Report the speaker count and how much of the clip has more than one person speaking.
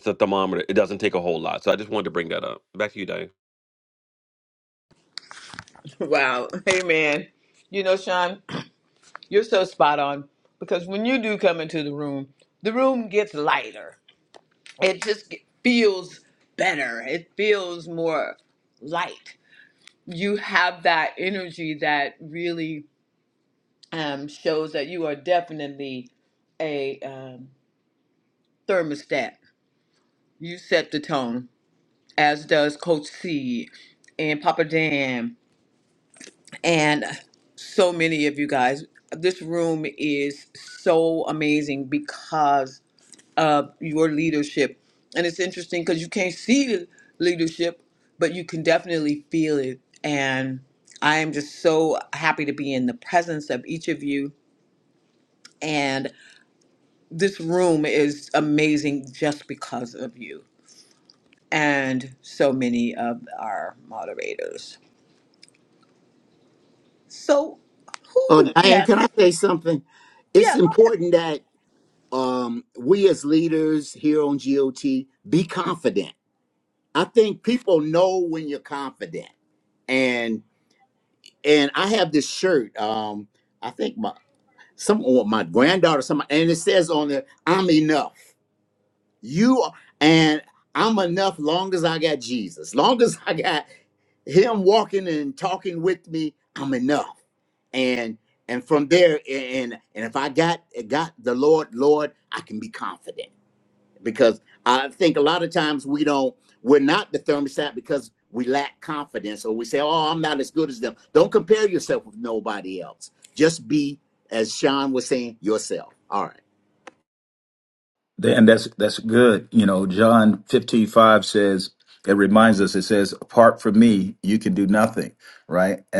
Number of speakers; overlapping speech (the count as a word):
four, about 1%